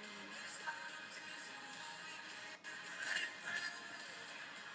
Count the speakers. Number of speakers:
0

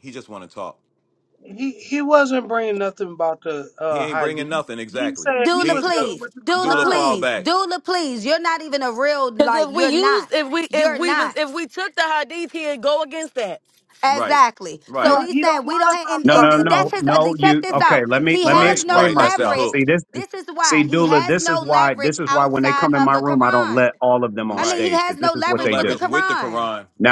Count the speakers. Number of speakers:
5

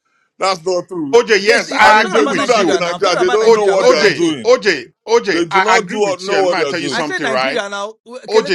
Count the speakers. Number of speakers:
3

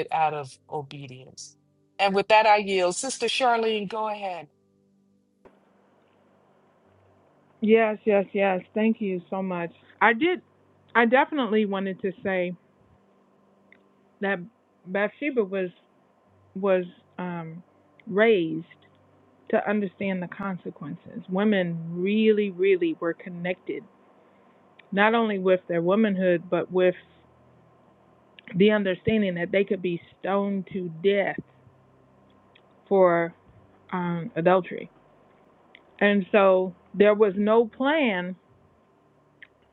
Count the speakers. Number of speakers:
2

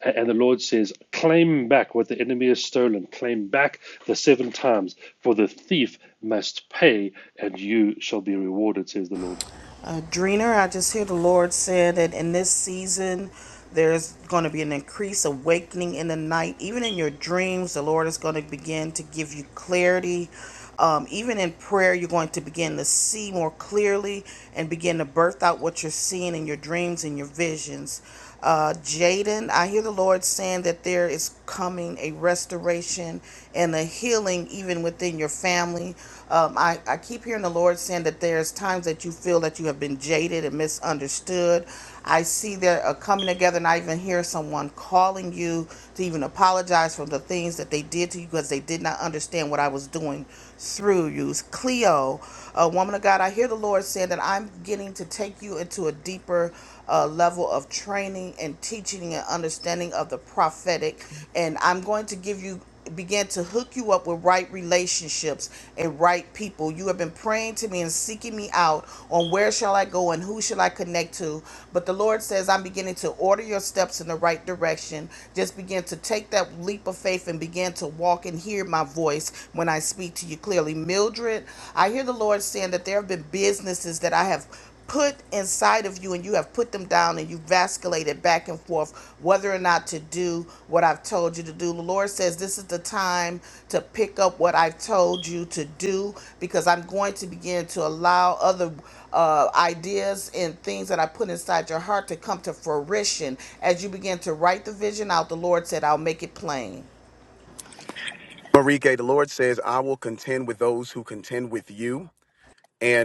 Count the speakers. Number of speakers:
3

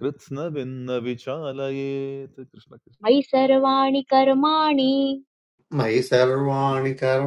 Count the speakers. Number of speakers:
3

